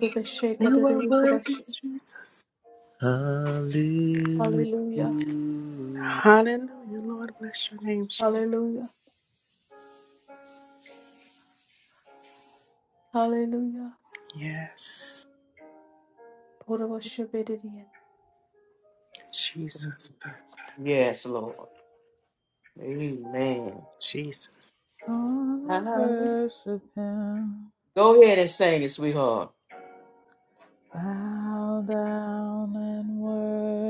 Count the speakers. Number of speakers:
5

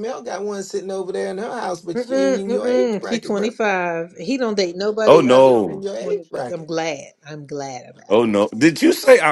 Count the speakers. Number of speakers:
3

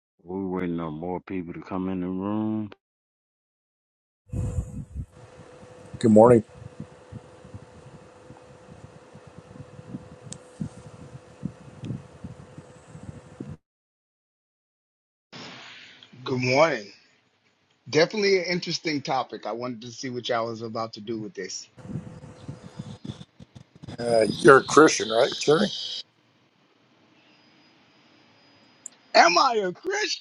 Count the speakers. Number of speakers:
3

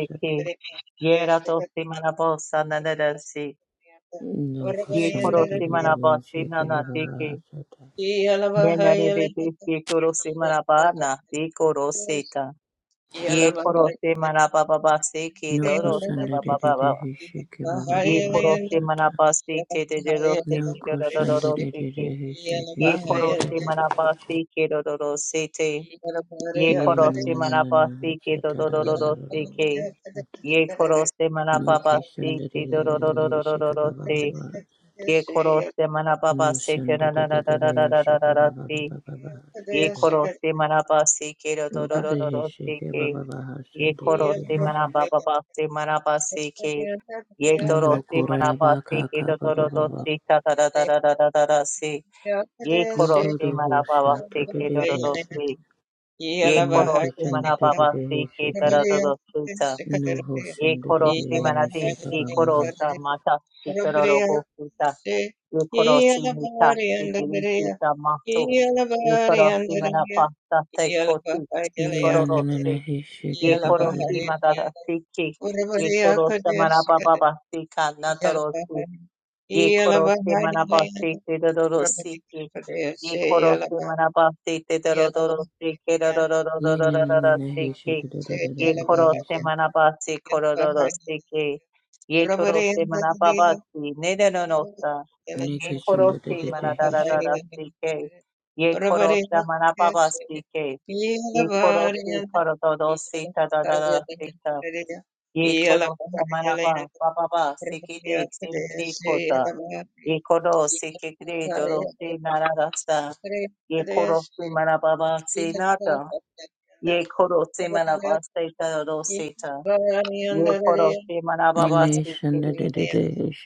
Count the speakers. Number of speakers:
3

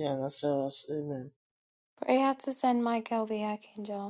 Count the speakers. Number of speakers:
2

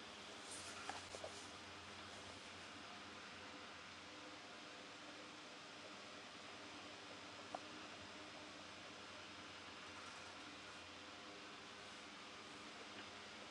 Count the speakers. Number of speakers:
0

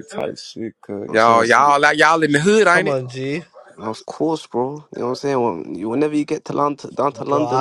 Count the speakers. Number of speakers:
3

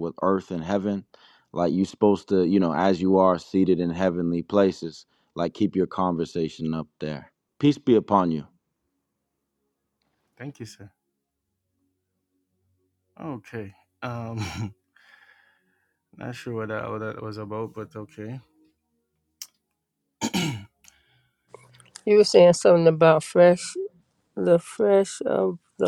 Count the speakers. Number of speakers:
3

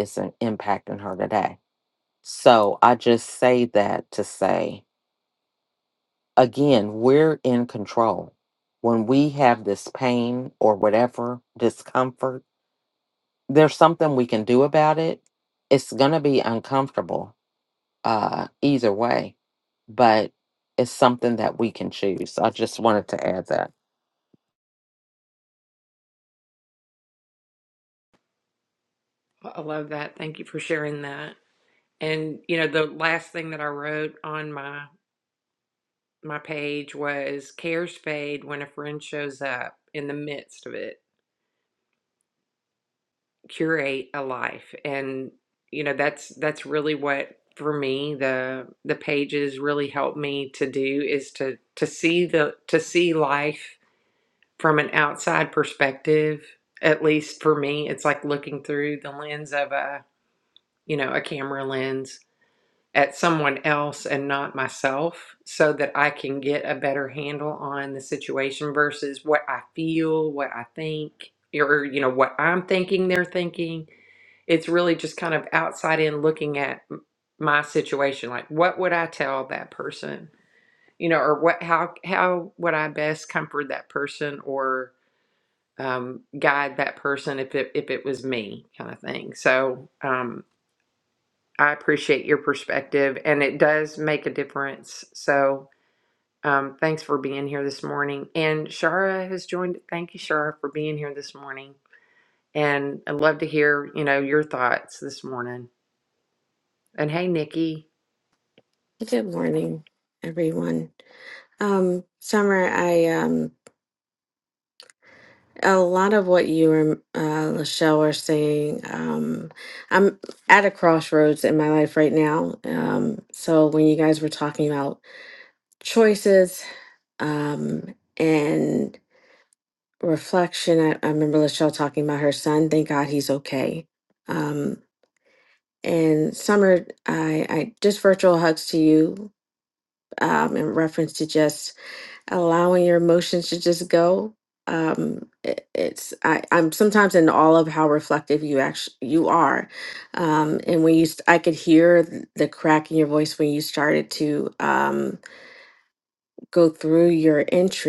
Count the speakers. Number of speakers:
3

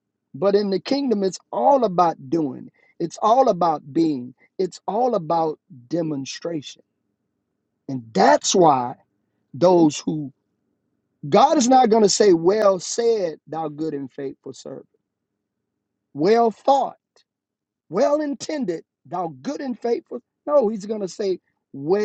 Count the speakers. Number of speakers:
1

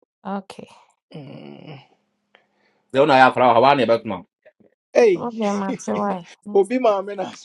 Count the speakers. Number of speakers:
3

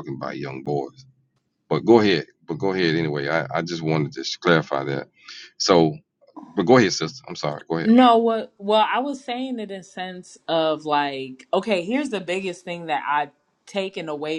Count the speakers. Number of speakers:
2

